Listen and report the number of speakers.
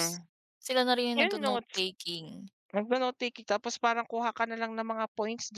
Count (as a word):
two